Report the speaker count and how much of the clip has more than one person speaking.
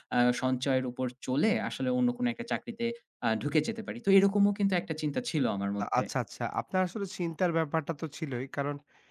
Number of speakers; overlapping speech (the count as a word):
two, about 3%